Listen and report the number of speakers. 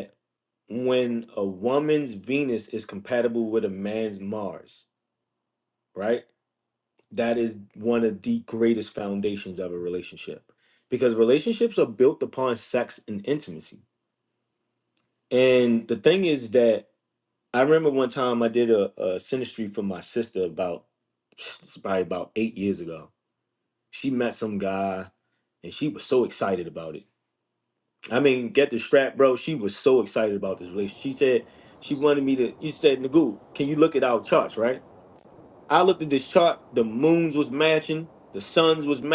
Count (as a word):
one